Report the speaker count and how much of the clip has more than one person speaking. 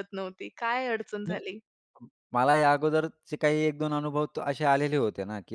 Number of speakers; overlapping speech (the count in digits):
2, no overlap